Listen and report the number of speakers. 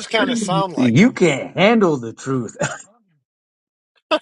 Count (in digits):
2